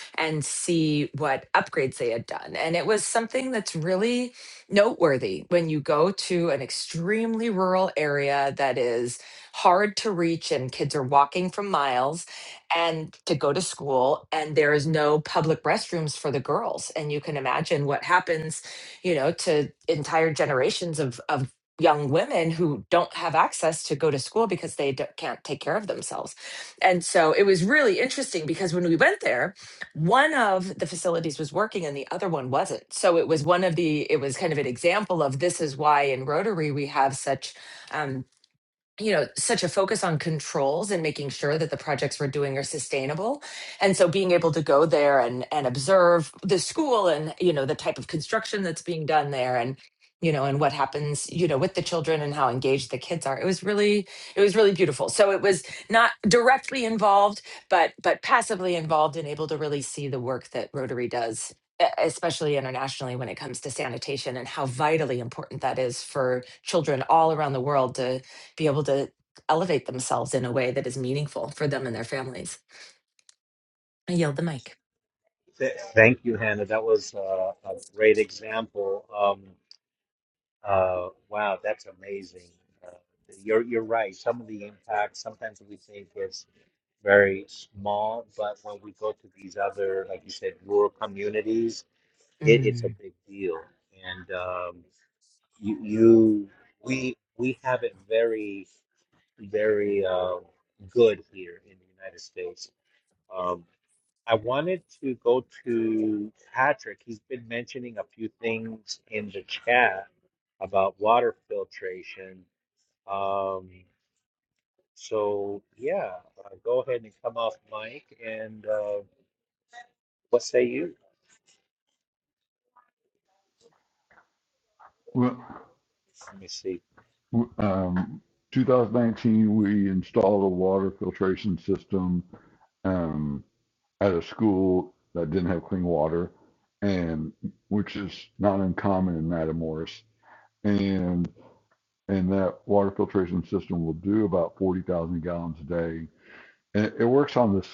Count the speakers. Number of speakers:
3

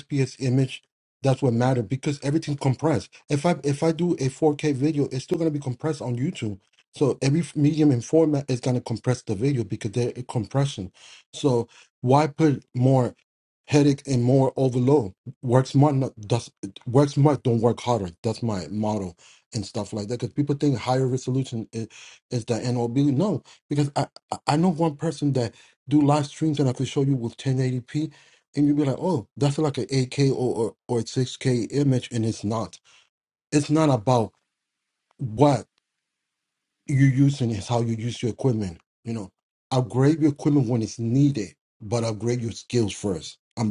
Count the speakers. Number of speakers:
1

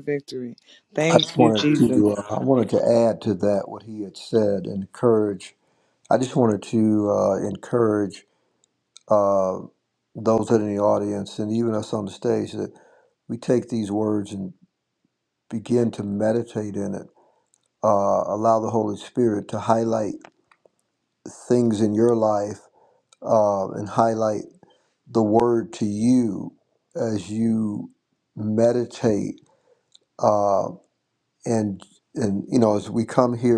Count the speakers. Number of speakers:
2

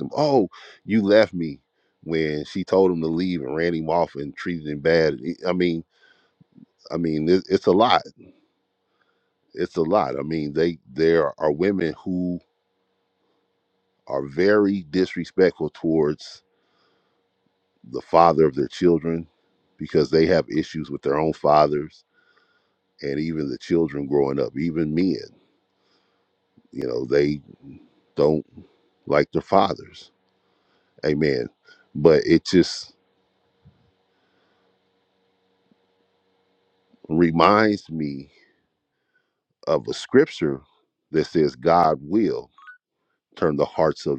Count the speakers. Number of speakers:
1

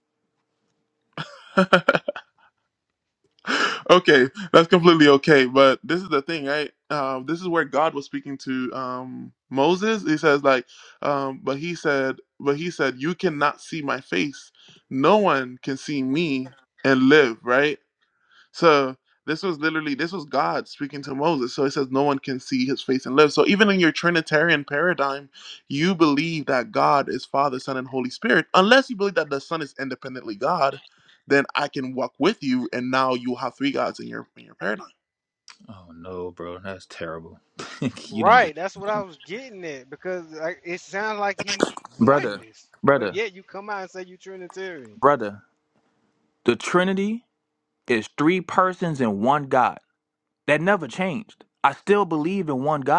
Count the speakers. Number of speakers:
3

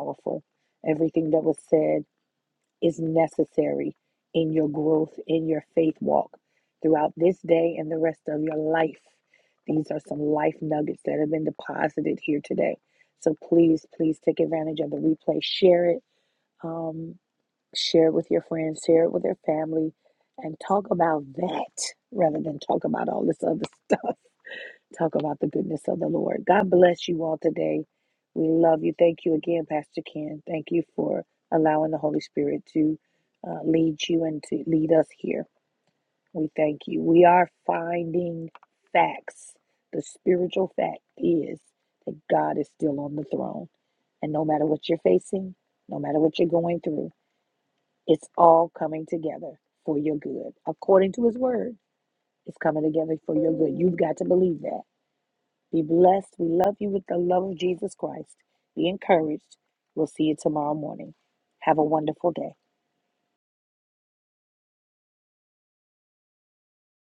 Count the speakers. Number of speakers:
1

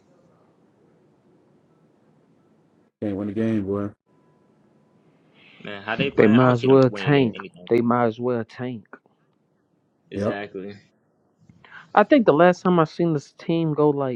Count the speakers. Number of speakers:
3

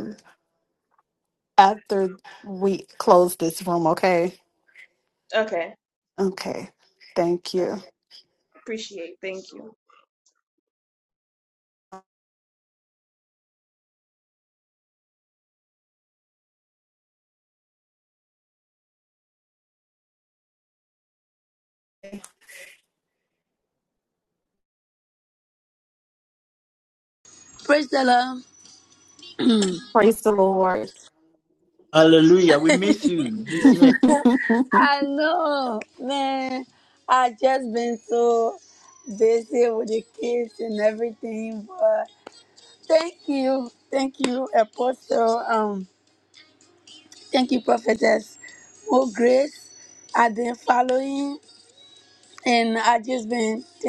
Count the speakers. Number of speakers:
4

